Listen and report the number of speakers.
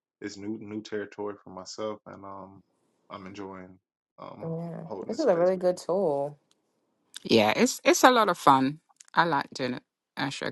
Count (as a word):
three